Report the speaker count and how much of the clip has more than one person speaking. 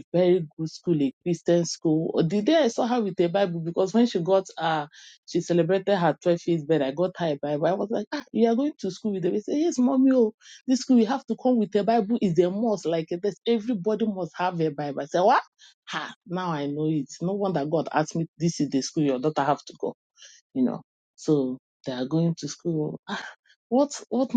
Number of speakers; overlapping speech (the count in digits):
1, no overlap